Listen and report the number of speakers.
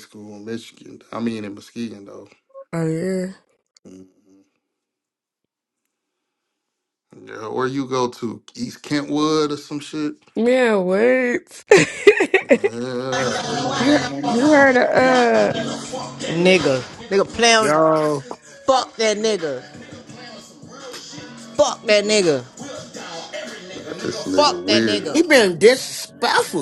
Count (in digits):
4